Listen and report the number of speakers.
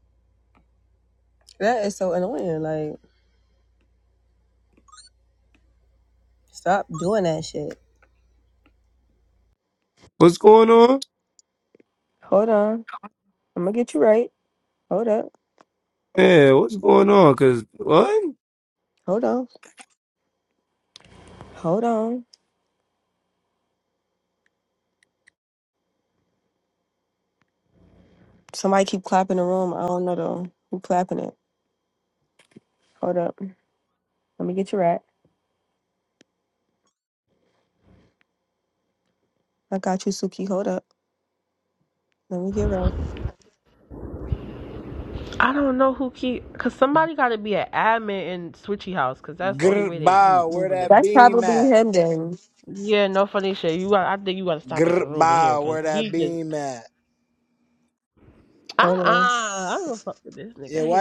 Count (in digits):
4